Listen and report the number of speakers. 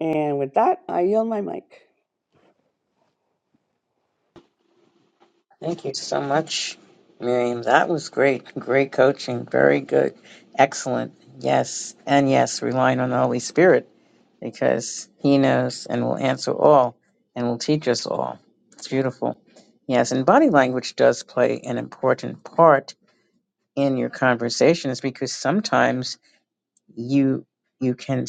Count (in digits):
2